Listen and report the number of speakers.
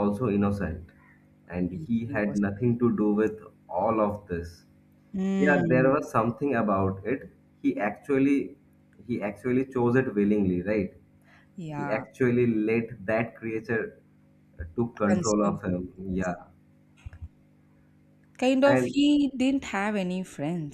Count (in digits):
2